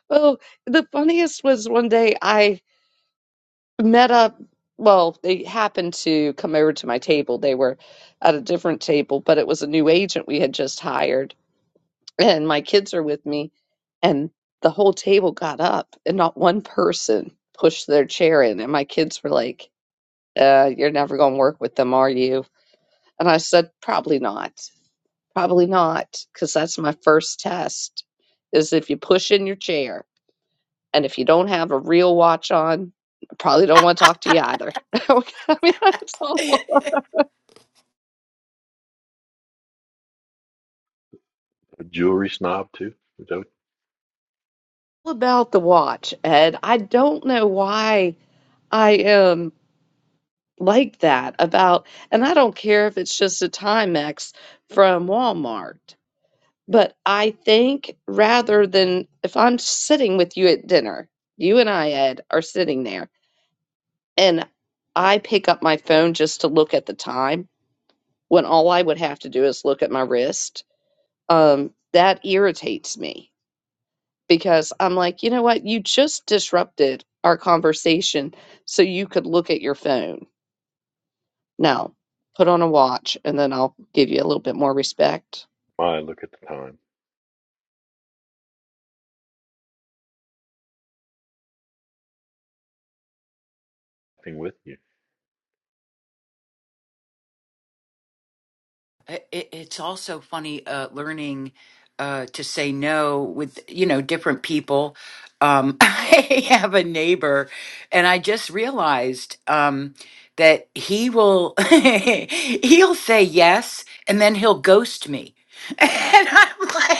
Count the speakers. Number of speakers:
3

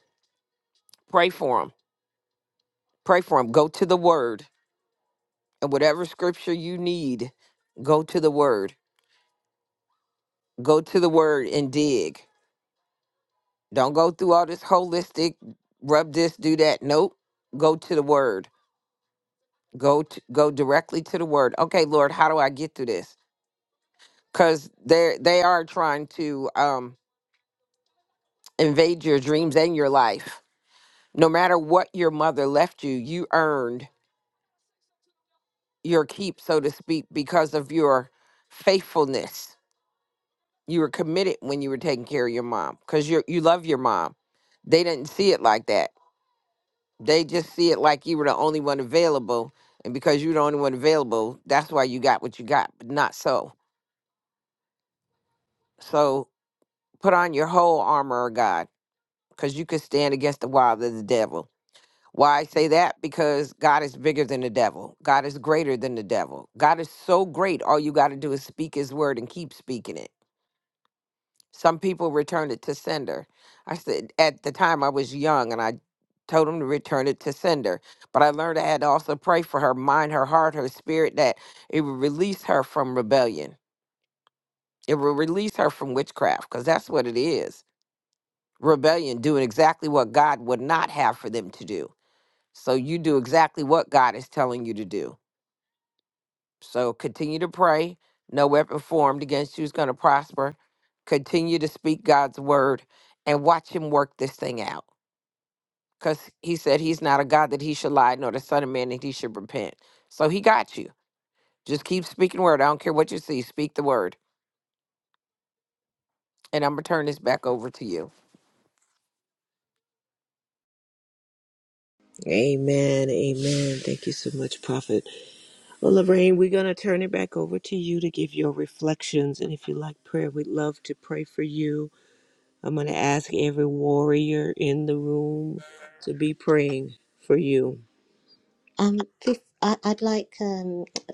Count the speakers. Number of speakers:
3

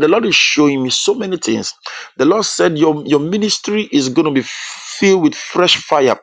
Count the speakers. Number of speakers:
1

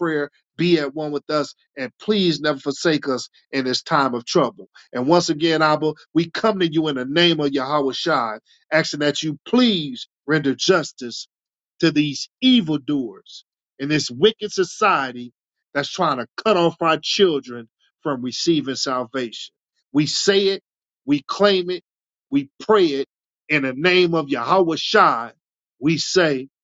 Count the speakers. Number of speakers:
1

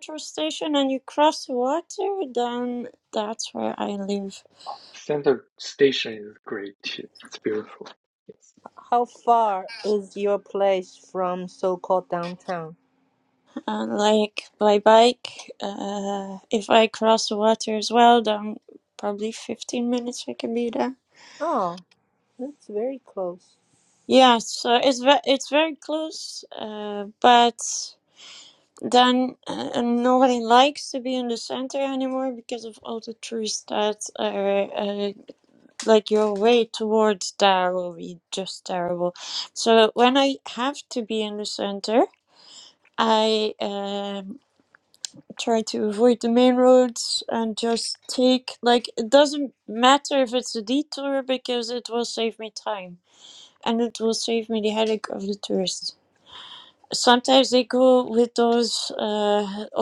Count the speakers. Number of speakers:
3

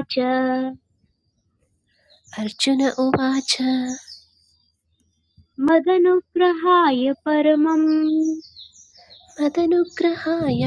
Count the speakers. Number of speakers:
2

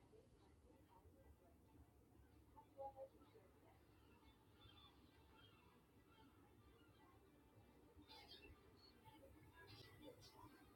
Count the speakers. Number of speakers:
0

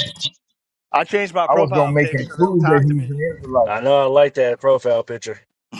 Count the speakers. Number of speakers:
3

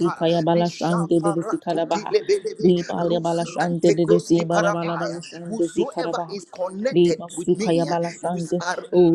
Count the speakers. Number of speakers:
2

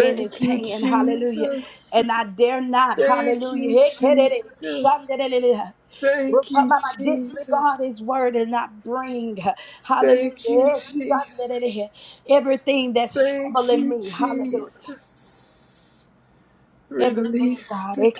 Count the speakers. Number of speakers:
2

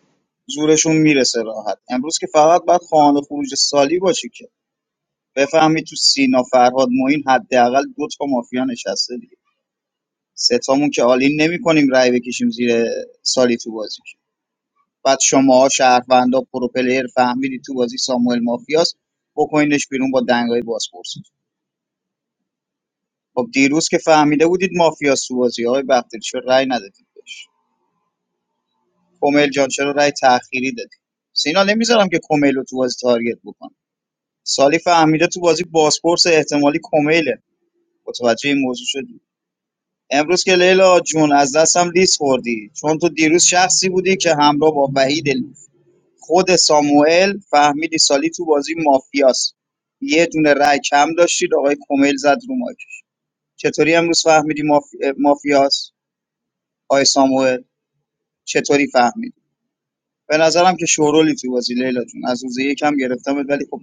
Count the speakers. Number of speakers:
1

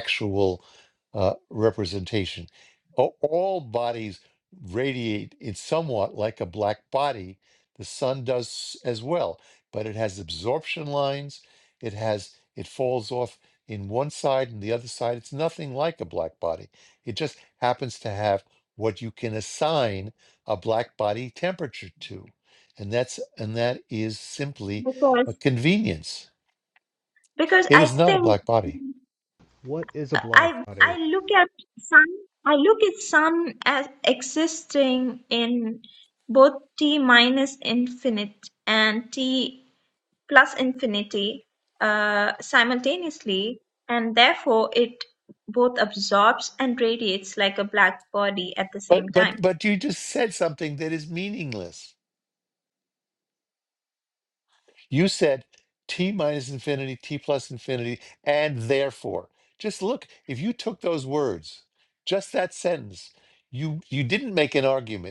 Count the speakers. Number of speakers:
3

